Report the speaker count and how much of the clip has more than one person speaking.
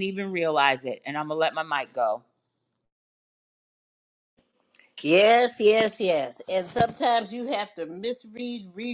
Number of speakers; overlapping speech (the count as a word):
two, no overlap